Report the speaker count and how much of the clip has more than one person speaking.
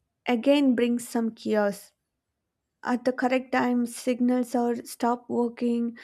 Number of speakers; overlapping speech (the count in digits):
1, no overlap